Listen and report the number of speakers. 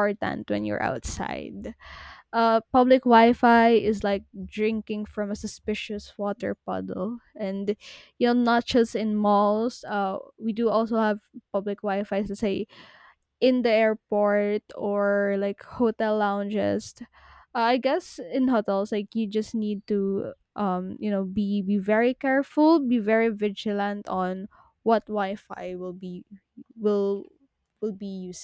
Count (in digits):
1